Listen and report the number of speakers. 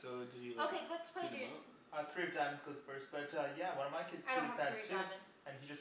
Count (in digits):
3